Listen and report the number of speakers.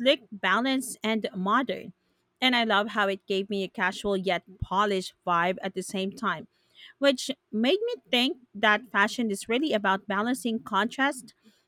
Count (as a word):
one